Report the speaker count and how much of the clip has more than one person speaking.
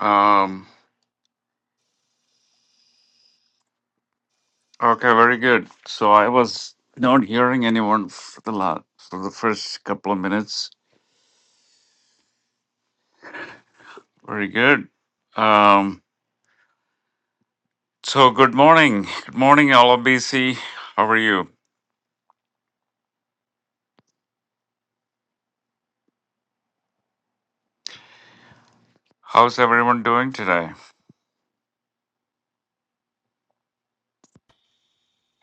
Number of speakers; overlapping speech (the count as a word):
one, no overlap